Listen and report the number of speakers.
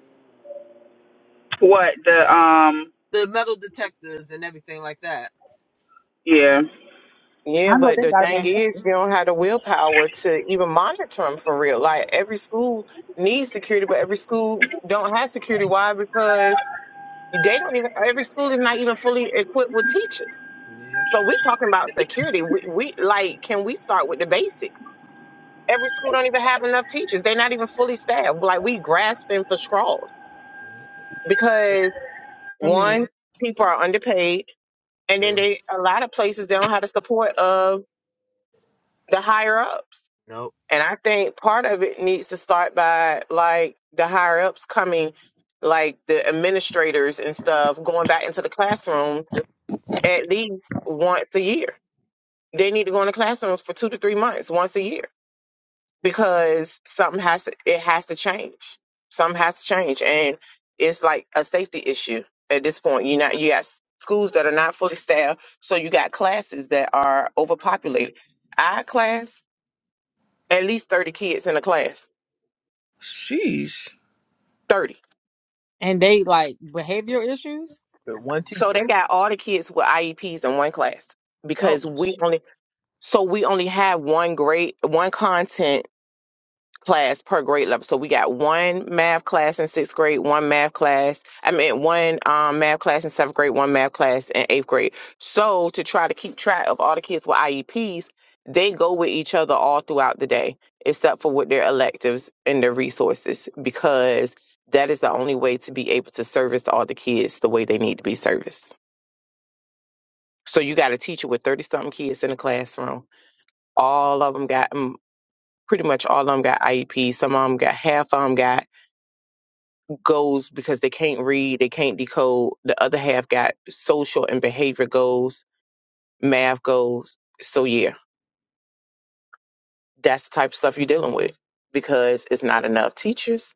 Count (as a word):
five